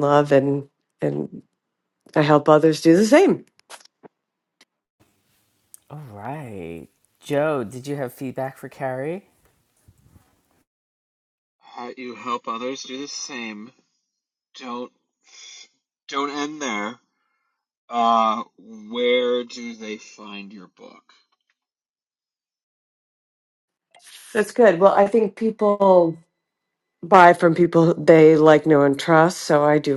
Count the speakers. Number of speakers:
3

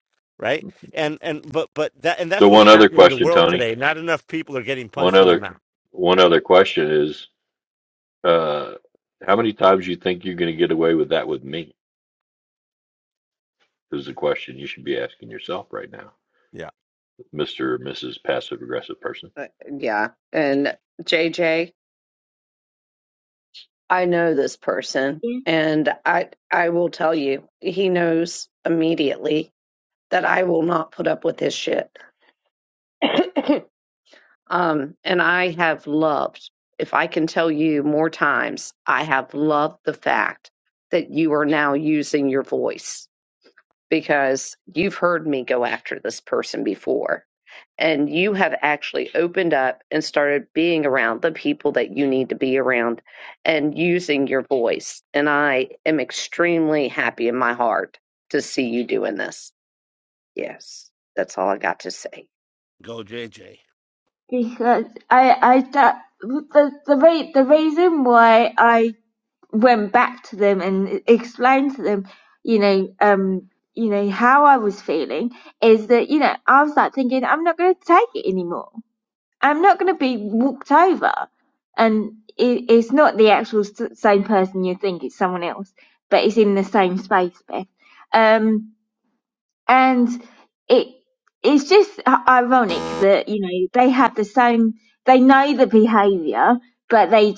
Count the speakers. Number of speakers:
4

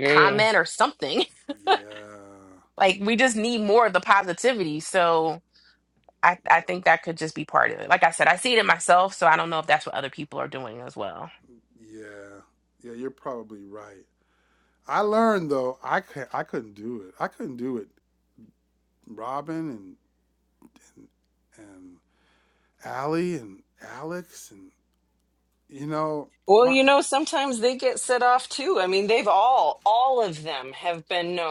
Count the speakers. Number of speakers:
3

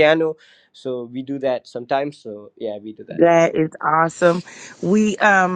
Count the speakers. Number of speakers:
2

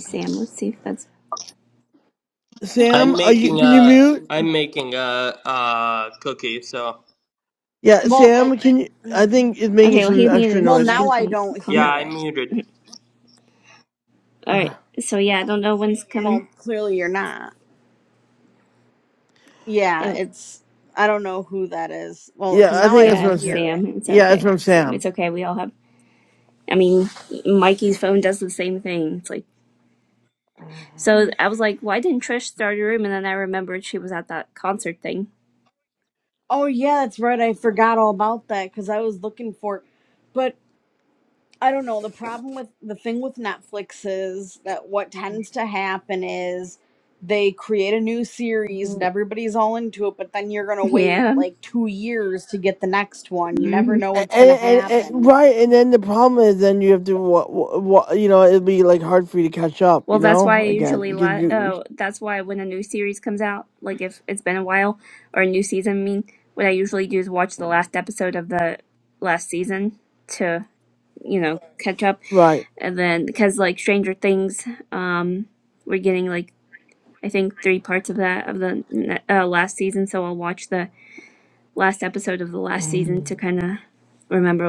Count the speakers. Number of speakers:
4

